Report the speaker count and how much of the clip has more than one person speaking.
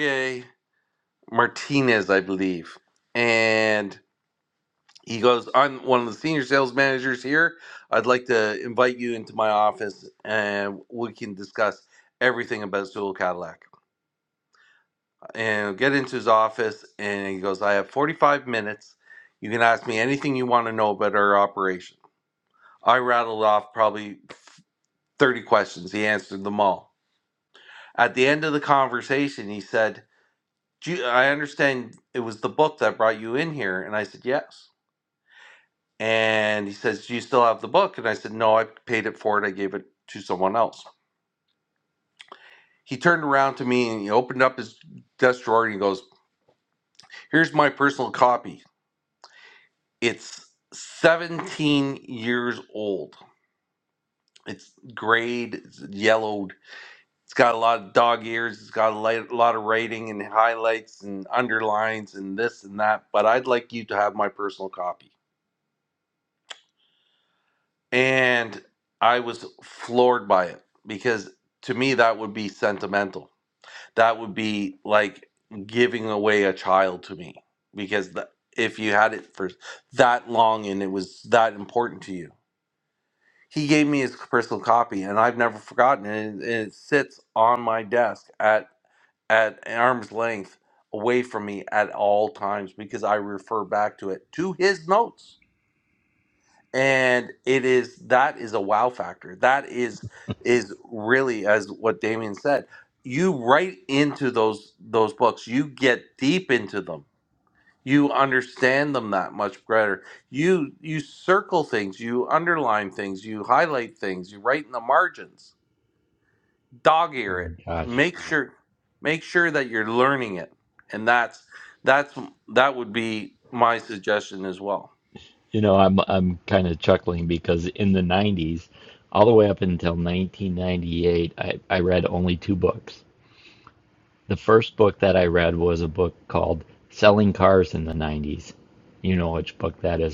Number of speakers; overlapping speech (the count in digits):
2, under 1%